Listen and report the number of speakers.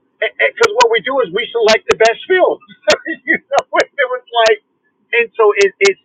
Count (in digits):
1